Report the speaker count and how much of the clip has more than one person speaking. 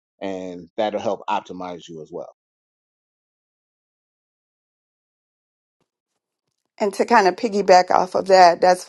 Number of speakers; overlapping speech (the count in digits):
2, no overlap